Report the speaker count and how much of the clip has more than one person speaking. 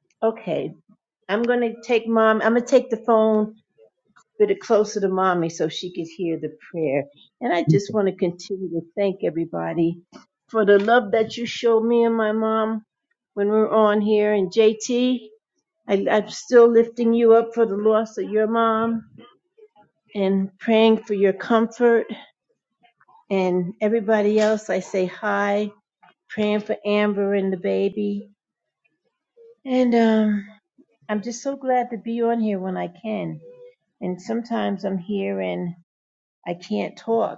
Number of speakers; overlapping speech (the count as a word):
one, no overlap